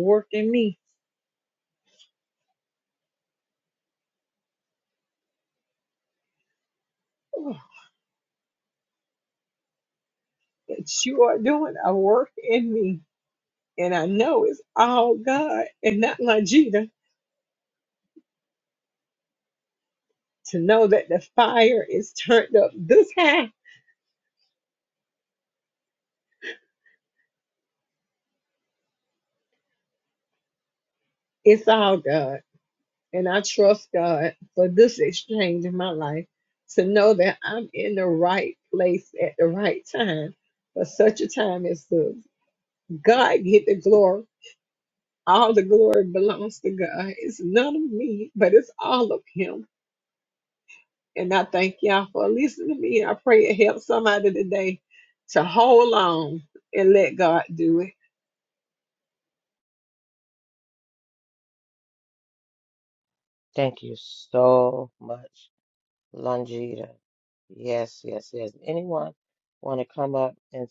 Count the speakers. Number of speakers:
2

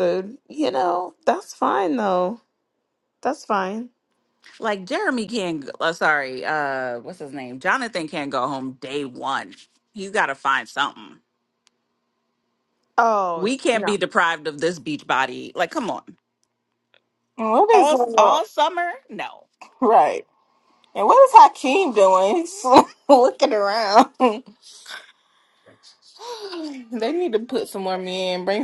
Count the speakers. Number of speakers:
3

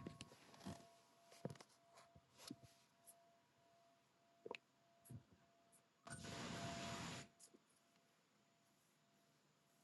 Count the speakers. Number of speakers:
0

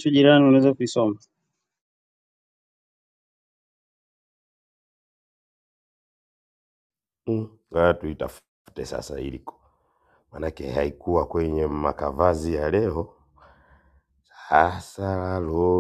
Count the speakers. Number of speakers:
2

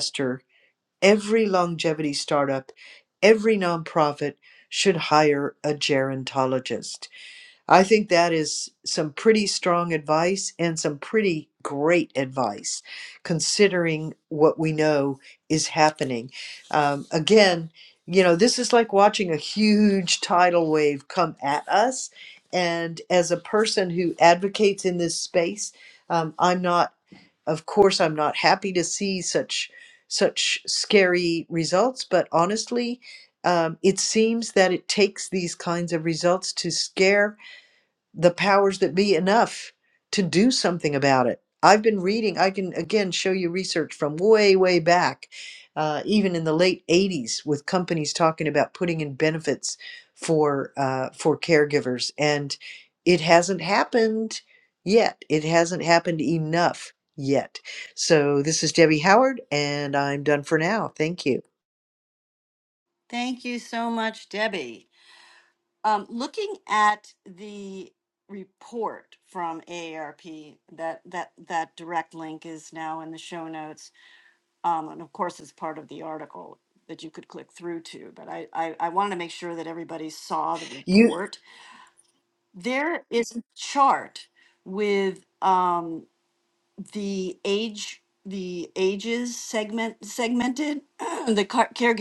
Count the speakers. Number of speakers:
2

